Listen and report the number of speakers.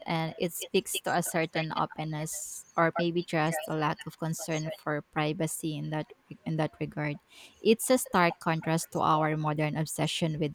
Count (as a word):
one